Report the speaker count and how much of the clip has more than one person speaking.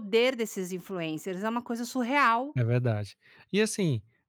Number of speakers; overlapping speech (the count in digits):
2, no overlap